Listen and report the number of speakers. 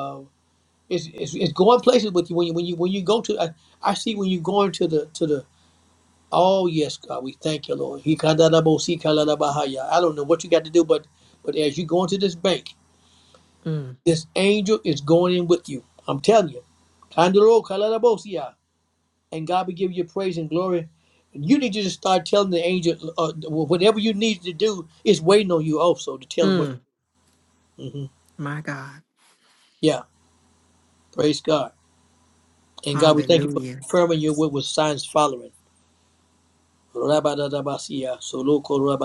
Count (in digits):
2